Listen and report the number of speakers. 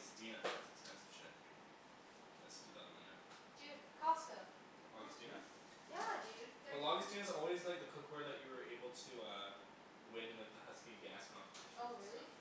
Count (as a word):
two